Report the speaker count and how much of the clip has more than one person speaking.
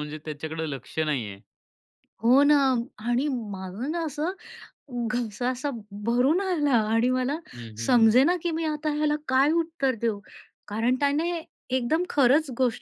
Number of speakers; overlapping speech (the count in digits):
2, about 2%